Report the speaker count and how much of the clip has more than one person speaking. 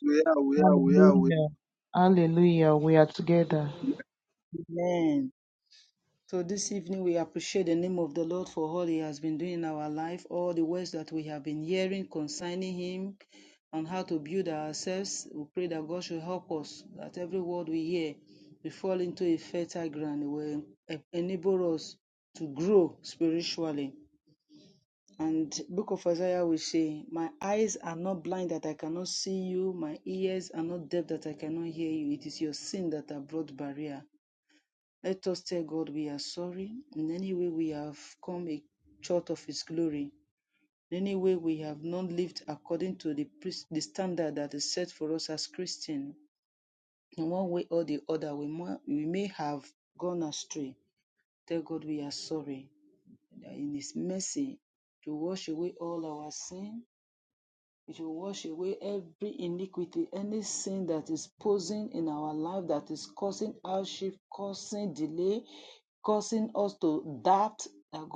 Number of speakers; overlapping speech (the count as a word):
three, about 1%